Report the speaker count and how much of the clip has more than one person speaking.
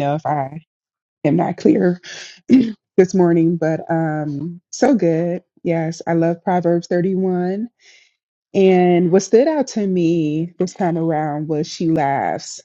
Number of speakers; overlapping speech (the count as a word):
one, no overlap